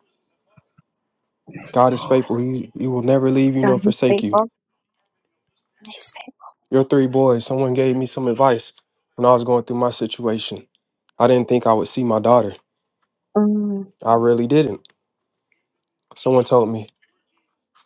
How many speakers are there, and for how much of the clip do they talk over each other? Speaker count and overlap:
two, about 4%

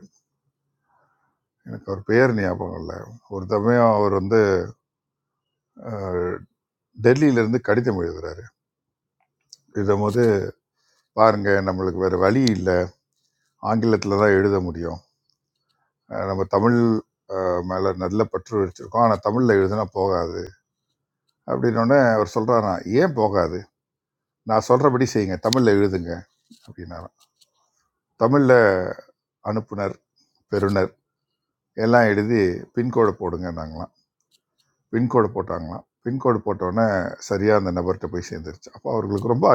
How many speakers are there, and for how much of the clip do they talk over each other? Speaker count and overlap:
one, no overlap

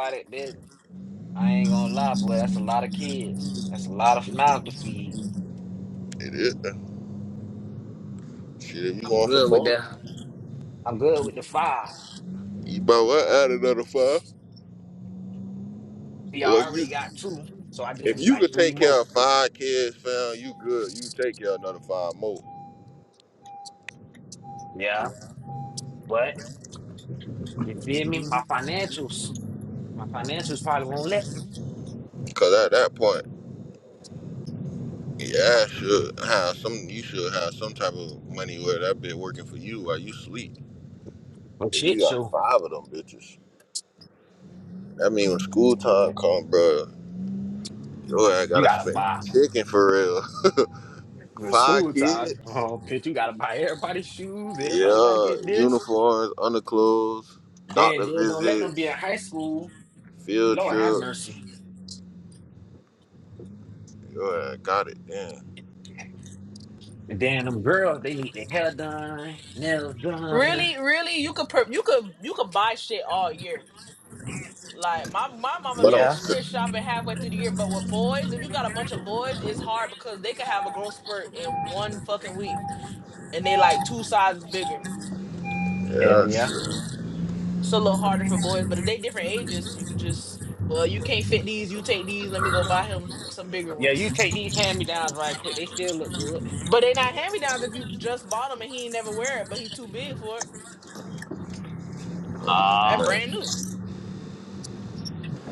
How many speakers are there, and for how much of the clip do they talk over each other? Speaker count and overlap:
three, about 9%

